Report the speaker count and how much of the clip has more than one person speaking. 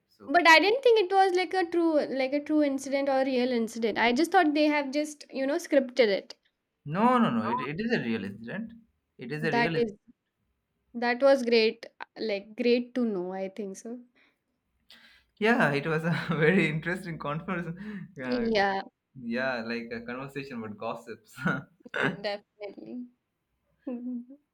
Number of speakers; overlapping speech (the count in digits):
2, about 3%